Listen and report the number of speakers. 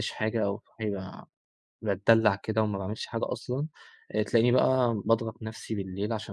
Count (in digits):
1